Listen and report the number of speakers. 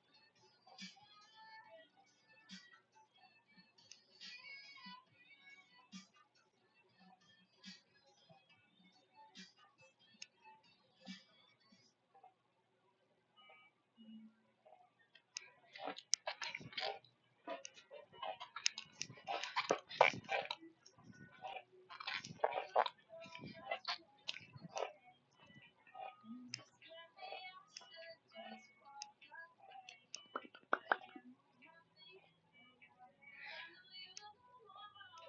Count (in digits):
0